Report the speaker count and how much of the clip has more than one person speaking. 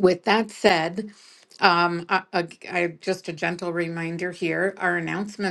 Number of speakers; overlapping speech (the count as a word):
one, no overlap